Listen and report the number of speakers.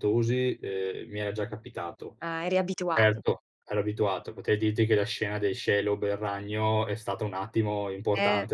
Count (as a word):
two